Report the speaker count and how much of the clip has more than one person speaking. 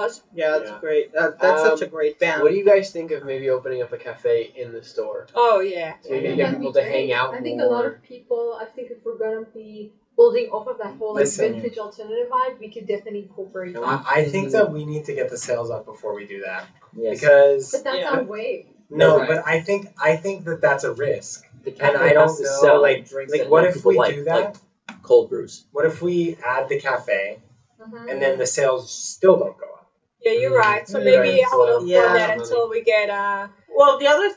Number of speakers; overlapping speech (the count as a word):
six, about 34%